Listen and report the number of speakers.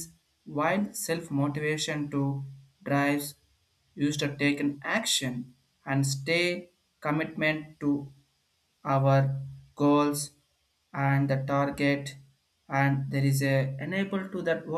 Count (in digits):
1